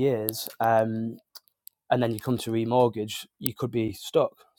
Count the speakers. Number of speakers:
1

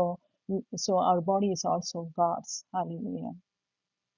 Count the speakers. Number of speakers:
1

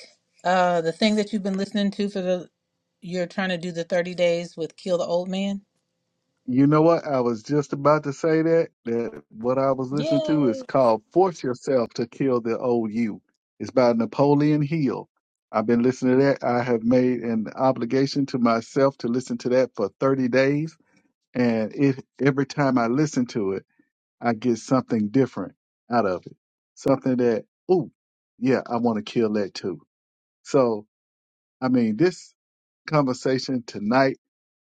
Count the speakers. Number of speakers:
2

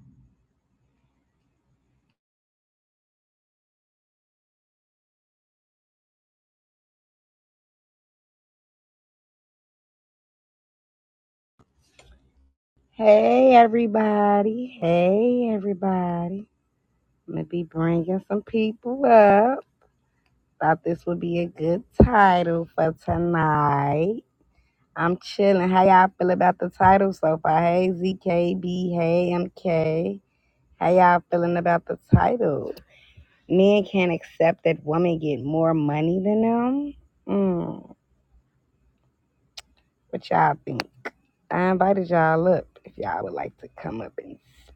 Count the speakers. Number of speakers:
1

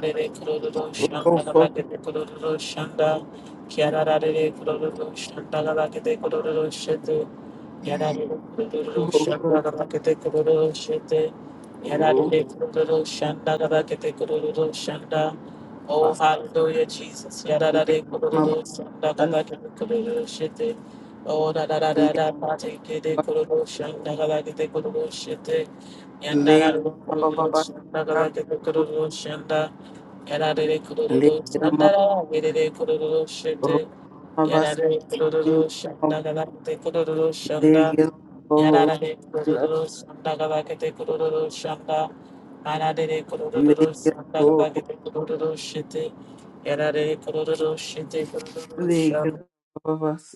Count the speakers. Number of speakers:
2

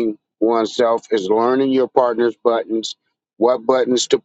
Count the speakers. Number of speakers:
1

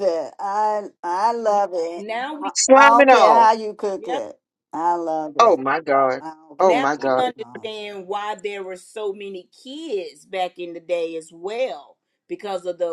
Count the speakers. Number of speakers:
3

